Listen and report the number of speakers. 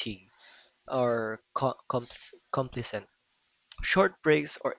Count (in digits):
1